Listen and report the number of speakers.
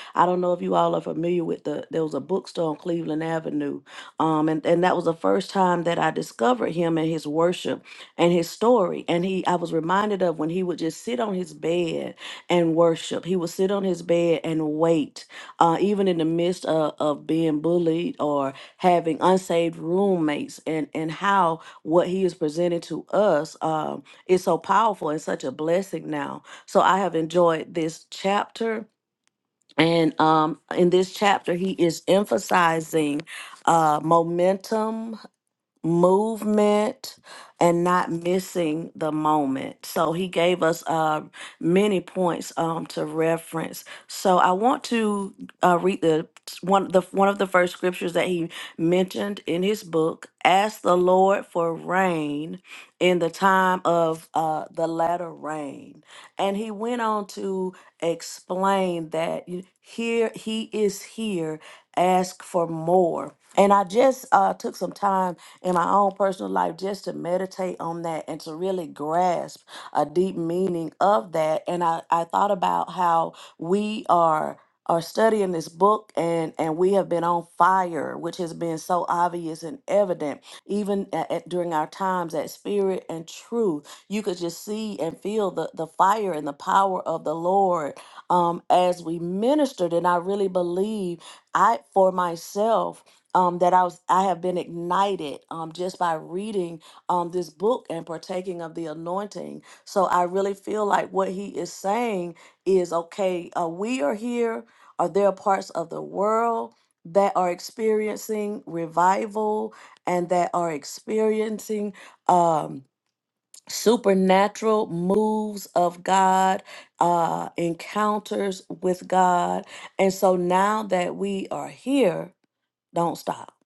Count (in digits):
1